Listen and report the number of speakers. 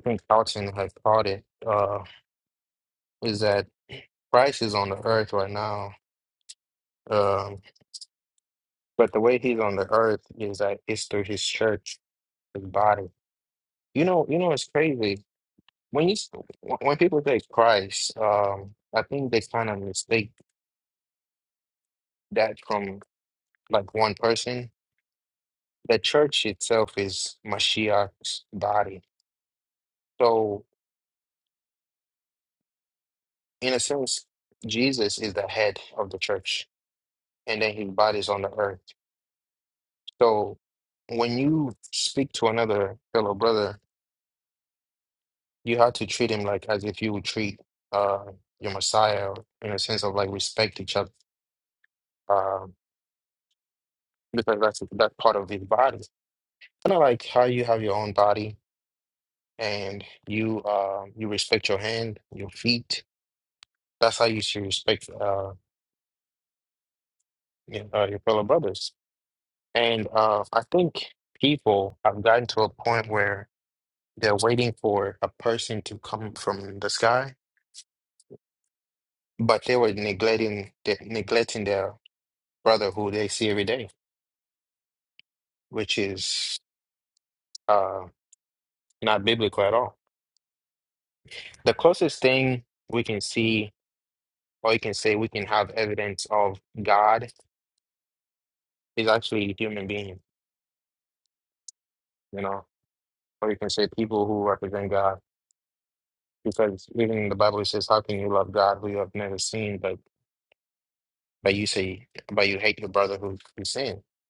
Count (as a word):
one